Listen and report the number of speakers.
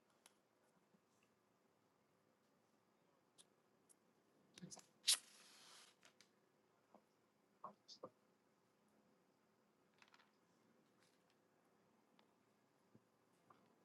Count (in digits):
0